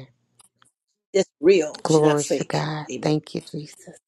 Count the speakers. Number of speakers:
two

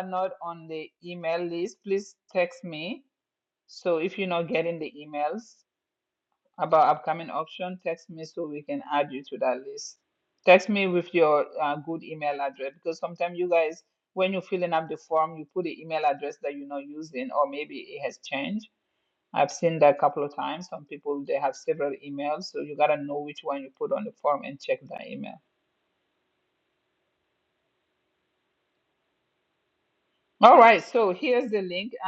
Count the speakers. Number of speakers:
one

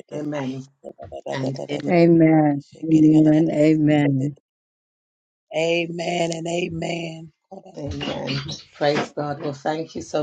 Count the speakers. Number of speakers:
three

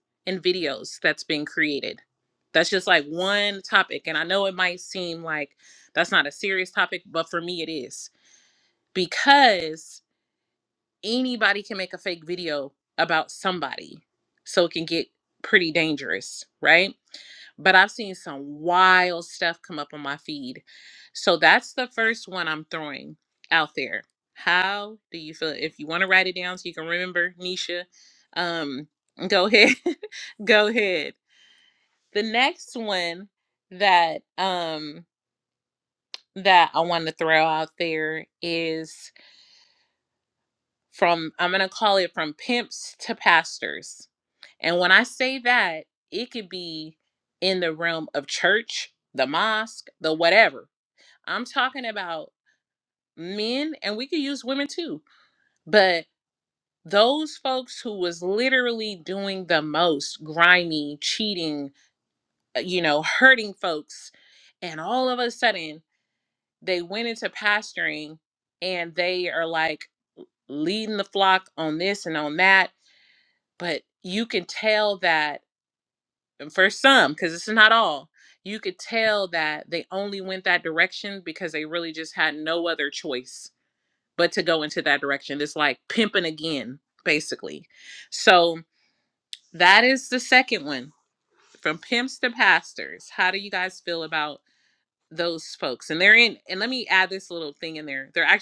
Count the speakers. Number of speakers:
one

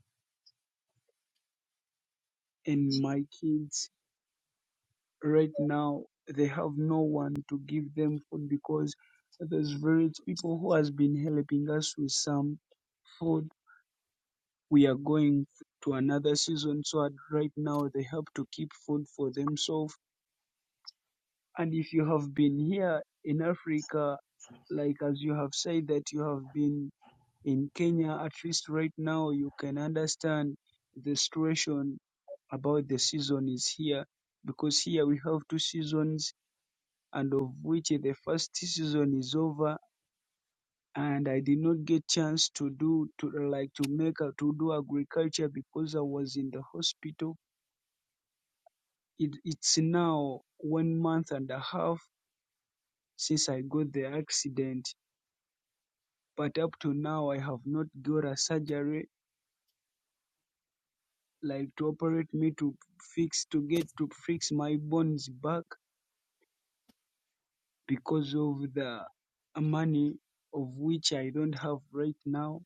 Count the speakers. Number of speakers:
one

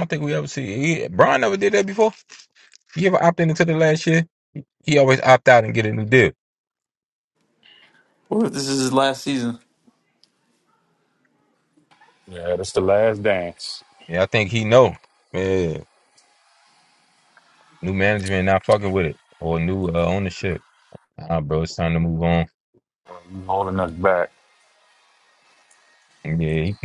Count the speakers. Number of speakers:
three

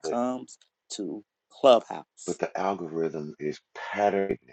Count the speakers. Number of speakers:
two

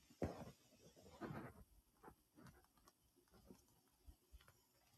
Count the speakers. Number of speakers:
zero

